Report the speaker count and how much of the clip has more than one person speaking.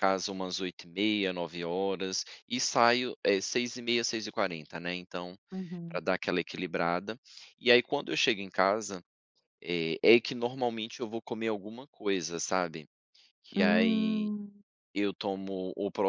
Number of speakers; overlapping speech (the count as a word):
two, about 4%